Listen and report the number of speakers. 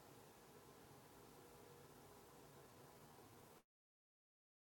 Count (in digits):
0